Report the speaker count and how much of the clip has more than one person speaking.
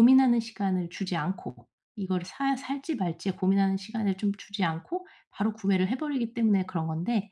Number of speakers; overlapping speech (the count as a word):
one, no overlap